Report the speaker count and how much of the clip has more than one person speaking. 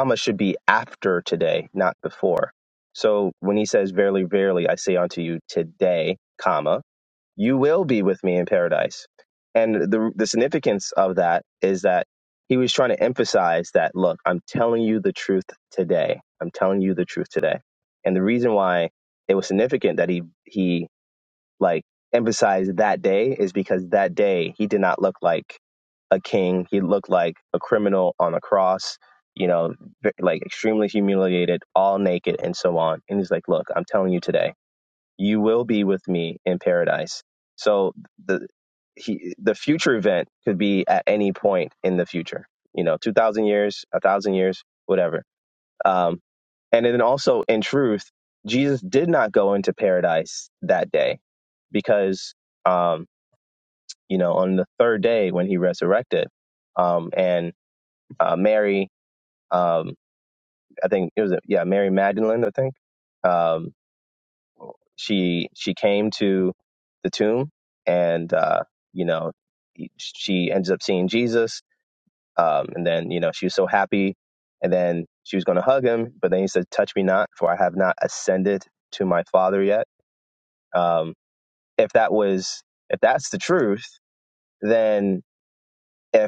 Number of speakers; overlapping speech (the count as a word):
one, no overlap